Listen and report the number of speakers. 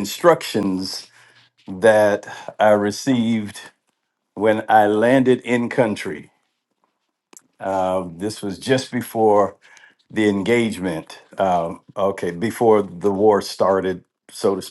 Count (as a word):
one